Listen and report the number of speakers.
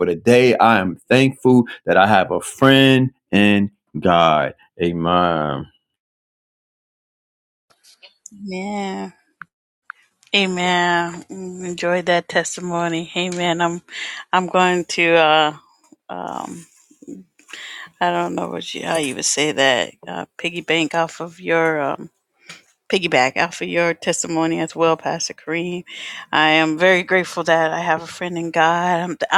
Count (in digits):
2